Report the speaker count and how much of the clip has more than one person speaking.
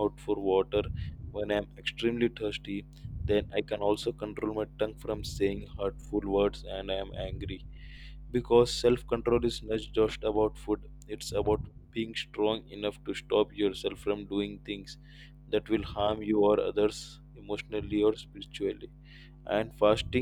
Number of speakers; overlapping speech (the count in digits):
1, no overlap